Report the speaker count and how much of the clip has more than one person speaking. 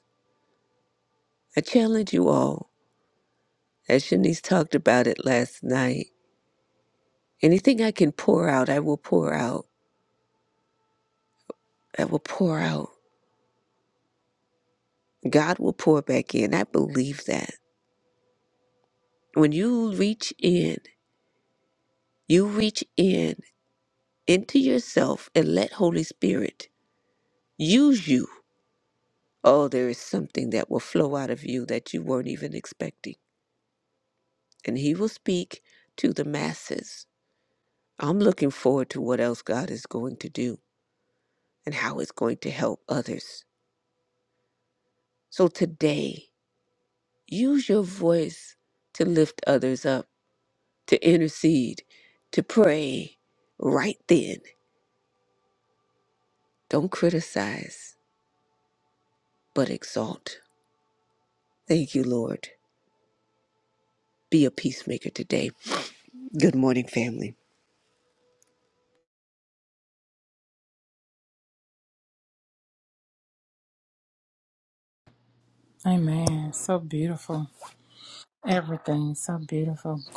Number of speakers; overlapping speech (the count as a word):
two, no overlap